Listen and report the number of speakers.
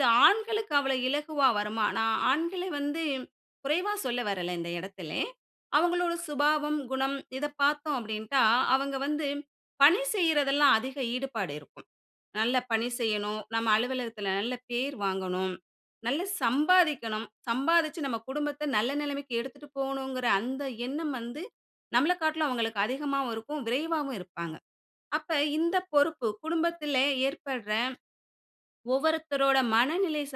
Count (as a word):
one